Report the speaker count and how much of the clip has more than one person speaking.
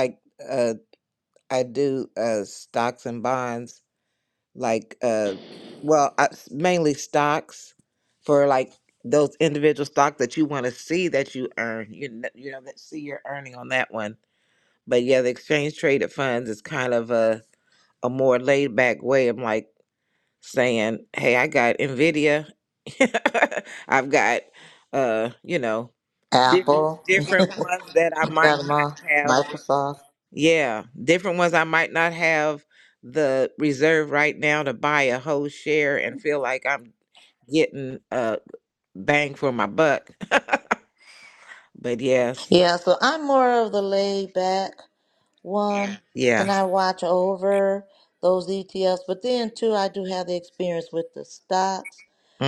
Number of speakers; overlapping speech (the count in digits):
2, about 3%